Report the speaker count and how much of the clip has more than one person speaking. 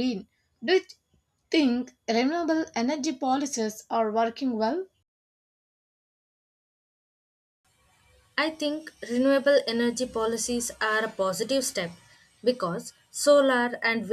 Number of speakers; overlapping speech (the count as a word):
two, no overlap